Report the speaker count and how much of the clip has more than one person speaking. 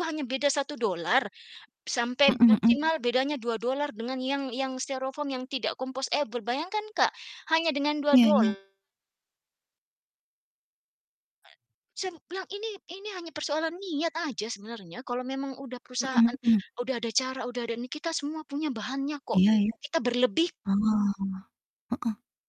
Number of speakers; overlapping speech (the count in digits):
2, about 6%